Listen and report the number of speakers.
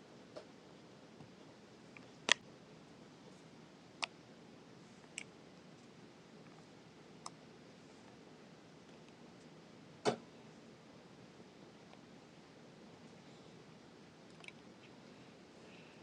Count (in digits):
0